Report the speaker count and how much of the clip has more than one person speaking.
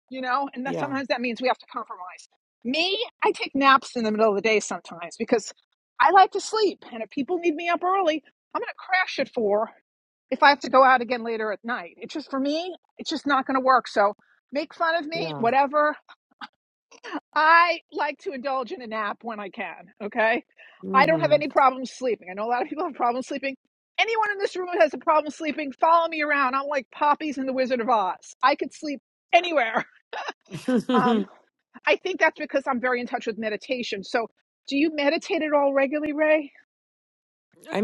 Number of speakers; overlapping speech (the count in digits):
2, about 3%